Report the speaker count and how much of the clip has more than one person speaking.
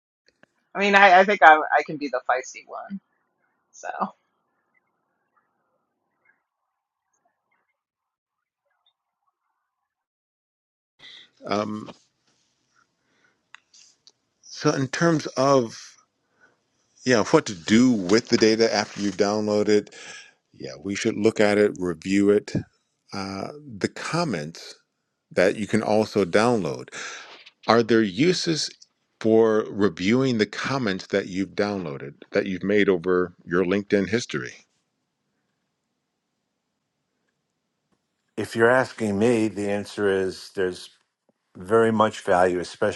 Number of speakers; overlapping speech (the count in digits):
3, no overlap